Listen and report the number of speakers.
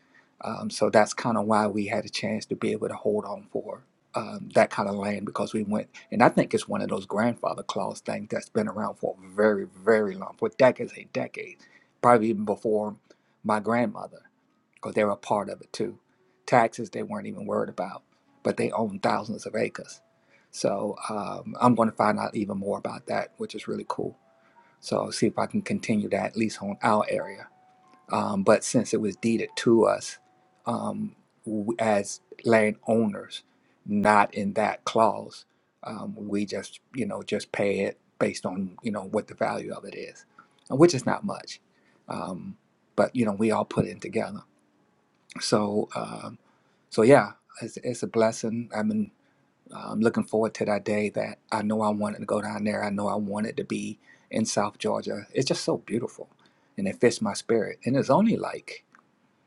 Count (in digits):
1